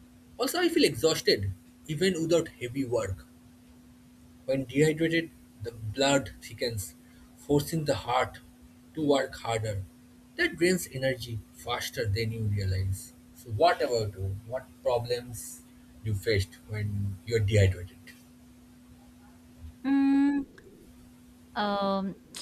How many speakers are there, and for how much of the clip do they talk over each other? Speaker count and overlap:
2, no overlap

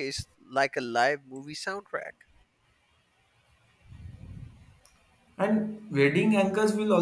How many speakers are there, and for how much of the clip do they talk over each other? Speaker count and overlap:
2, no overlap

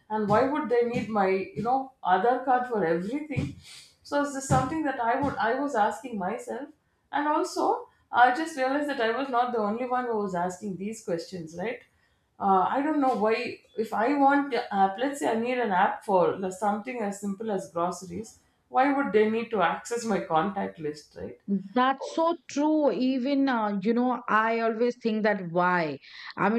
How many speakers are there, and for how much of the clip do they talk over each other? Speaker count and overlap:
2, no overlap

